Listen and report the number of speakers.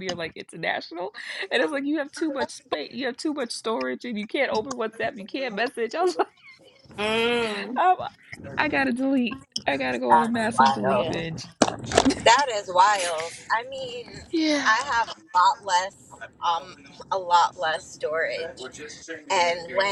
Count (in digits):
3